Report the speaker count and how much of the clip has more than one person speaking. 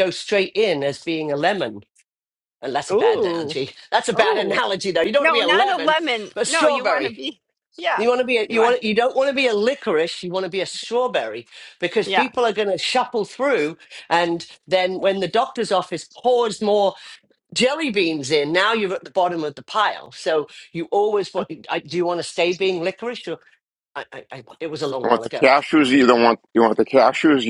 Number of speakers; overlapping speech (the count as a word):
three, about 13%